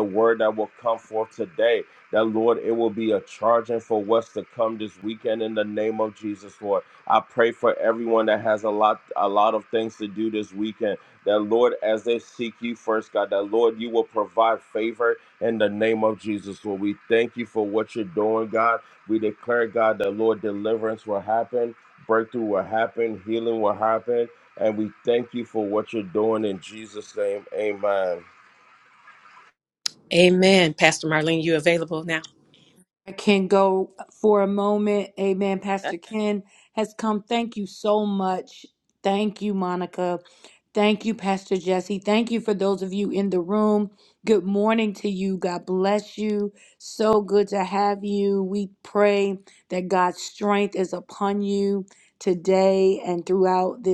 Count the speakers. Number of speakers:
3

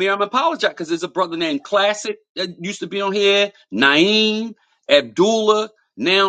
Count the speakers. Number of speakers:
1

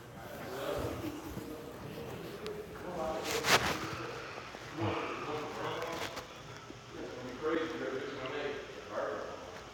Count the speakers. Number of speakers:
0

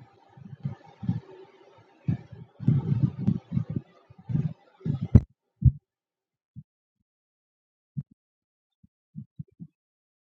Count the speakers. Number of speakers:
0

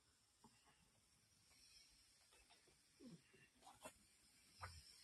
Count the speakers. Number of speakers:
0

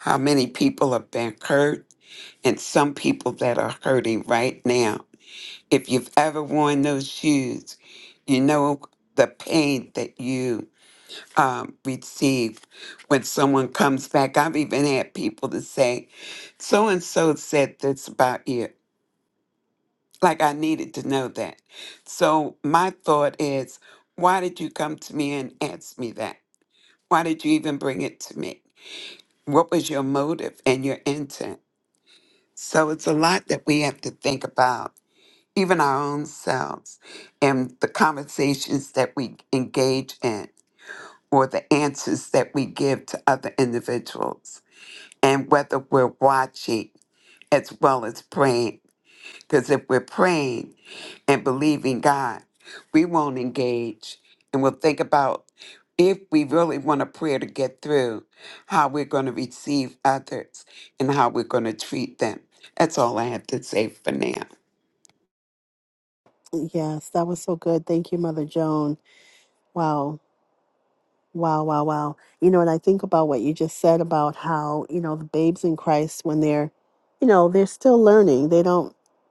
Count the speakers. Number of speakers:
2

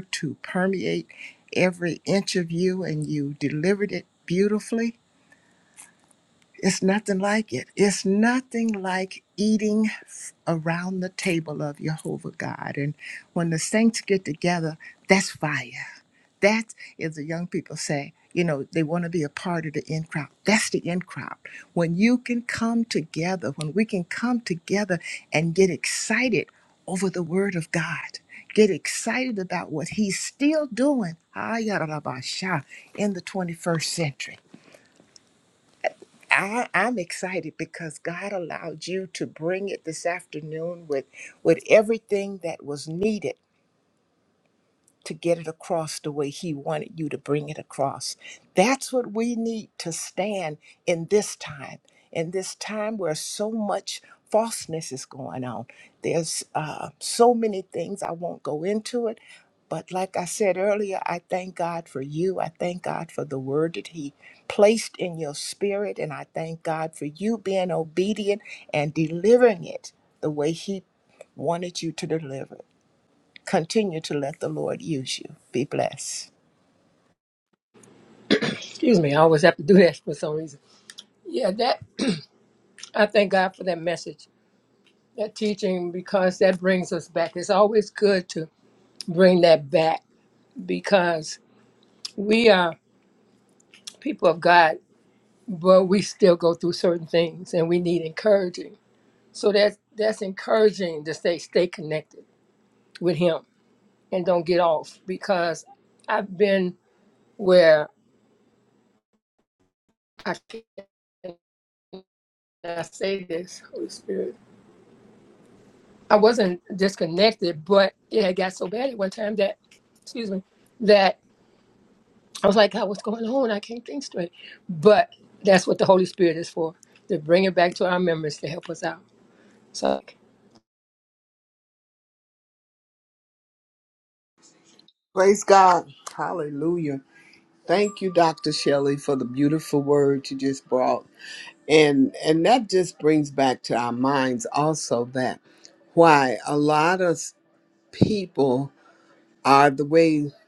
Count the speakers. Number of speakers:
3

